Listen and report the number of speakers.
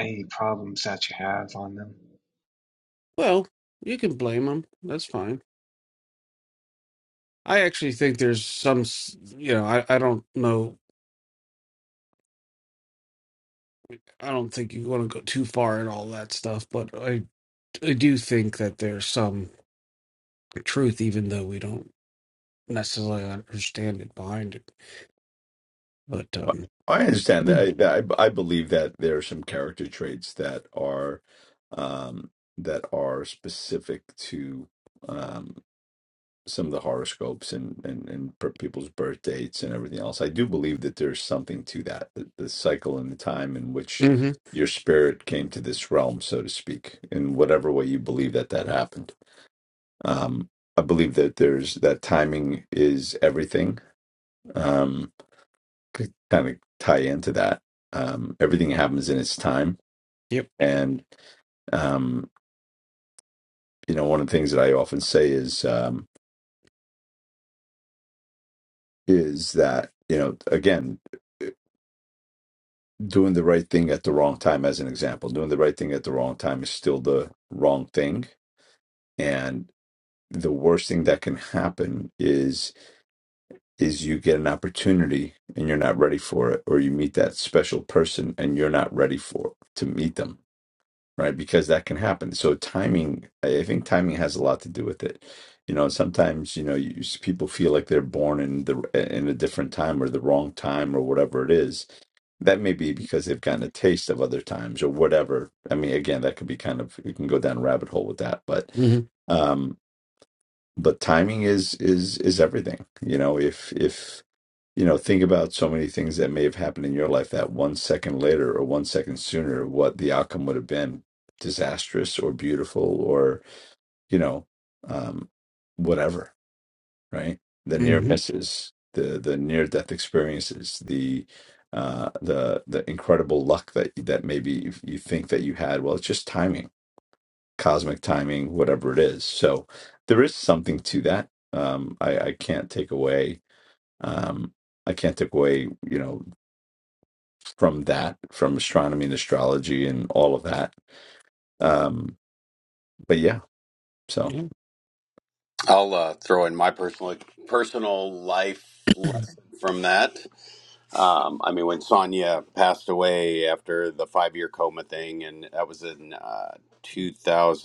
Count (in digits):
4